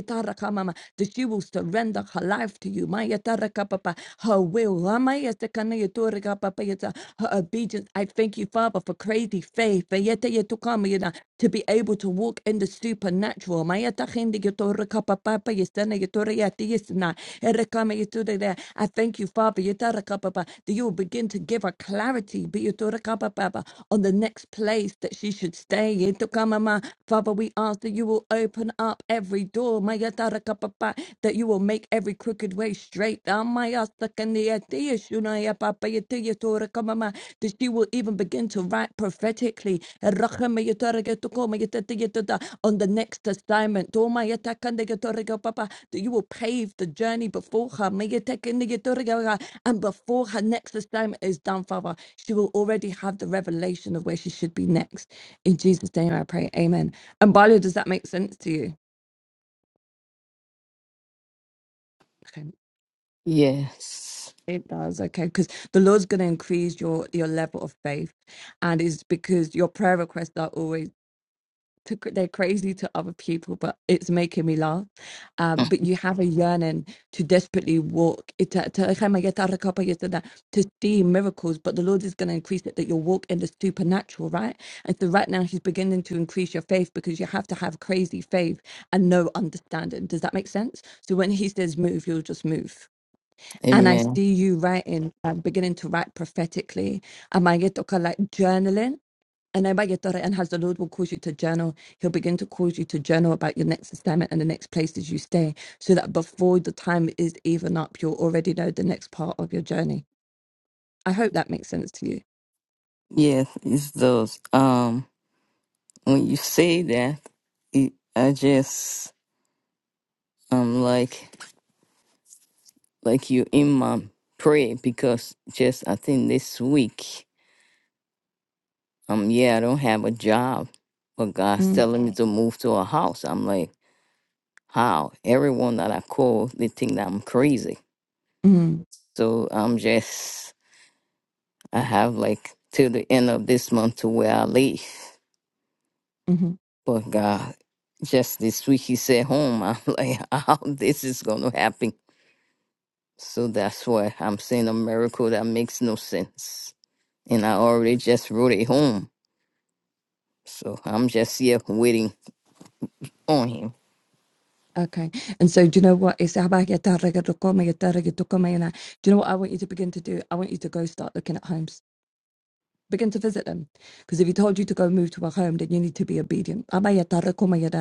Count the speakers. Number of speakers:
two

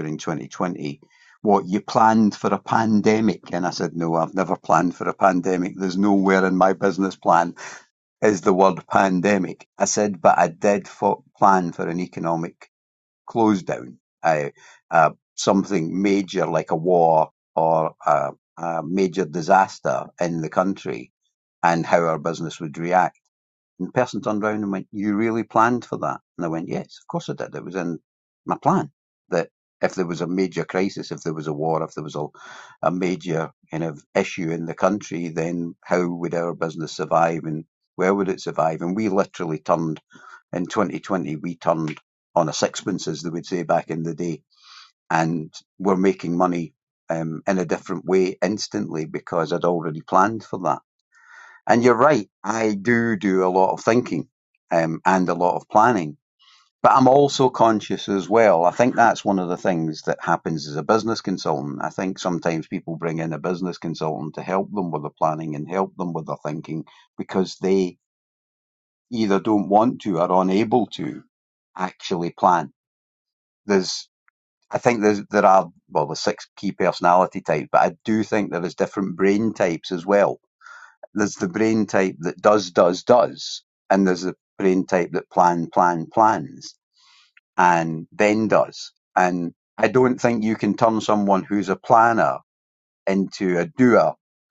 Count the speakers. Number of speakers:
one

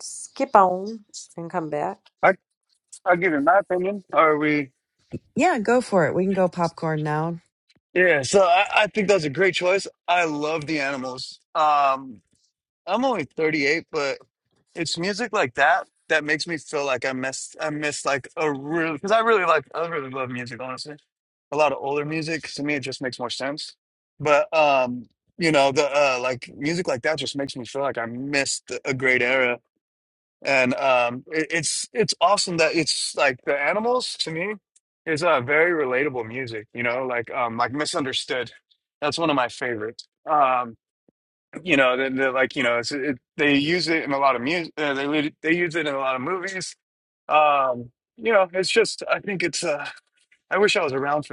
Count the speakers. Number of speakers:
three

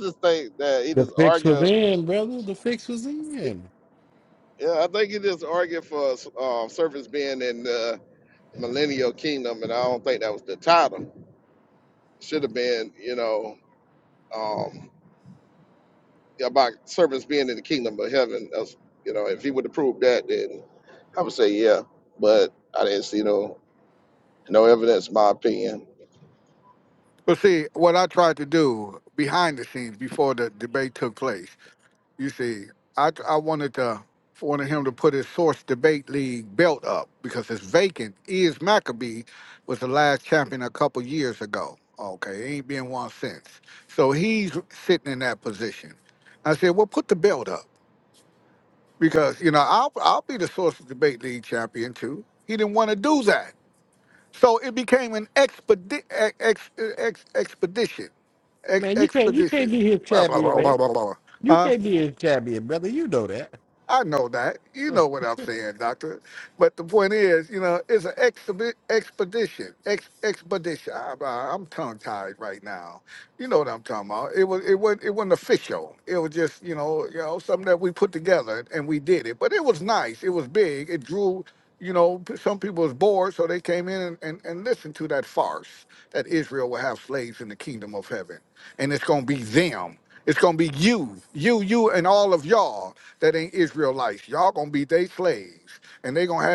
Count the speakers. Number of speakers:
three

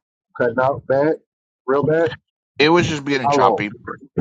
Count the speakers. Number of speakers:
two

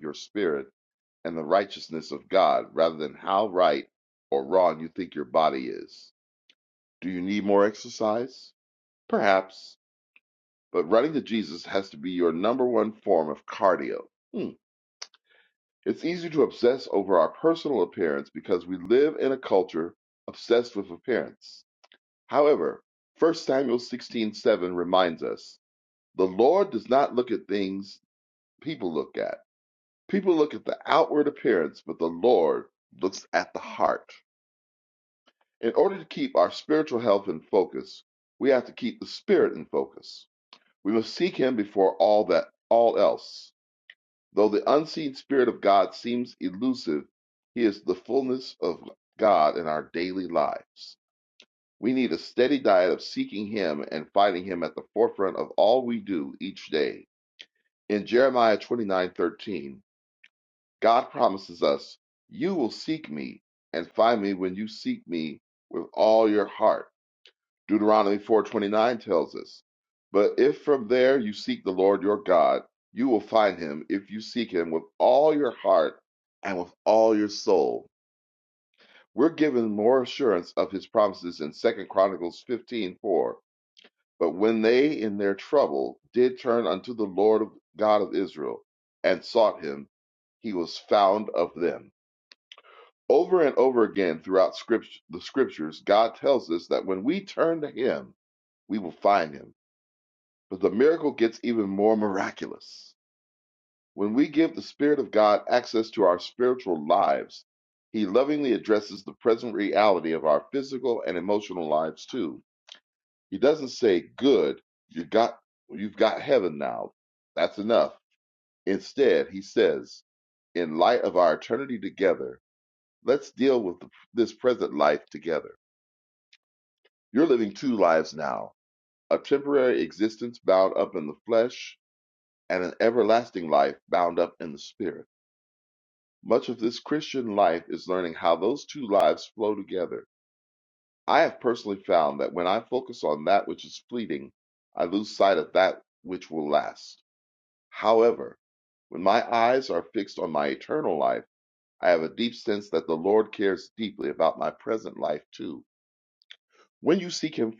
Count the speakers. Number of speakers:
one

